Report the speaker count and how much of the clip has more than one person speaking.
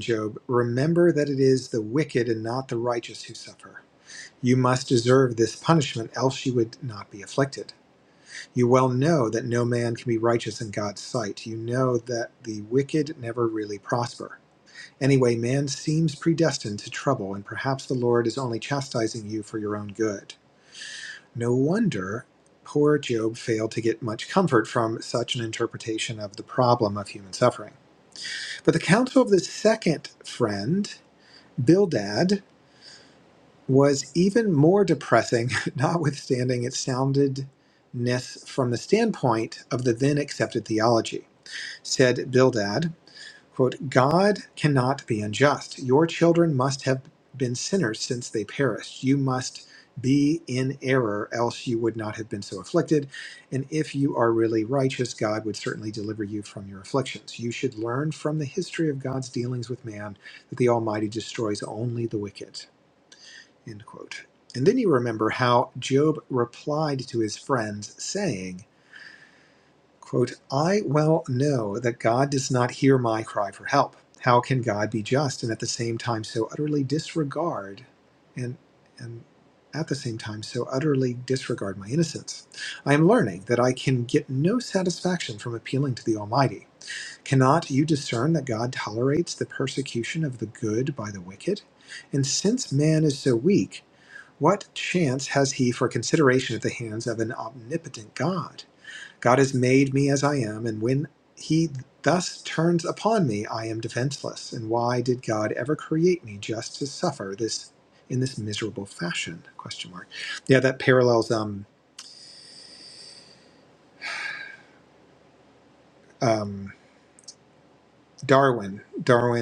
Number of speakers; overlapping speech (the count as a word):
one, no overlap